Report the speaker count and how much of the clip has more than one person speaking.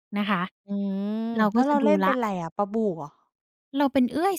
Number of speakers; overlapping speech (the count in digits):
2, about 19%